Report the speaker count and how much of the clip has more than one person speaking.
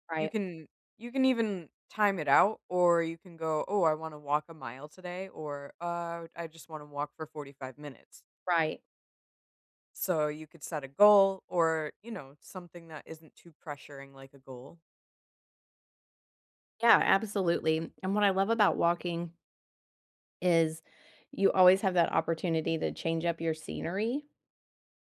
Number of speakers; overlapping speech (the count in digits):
2, under 1%